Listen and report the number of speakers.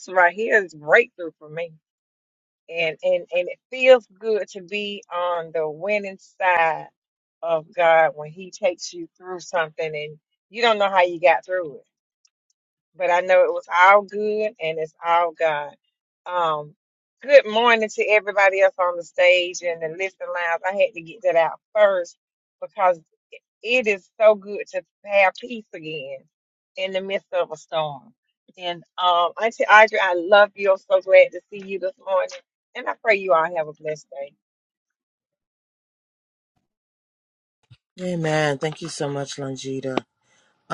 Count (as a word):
two